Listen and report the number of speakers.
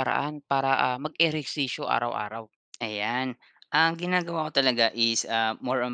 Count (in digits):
2